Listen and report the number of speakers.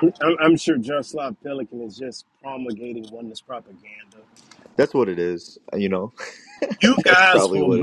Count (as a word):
two